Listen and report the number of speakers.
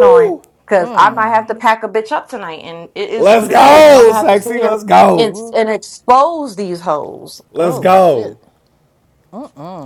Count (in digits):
3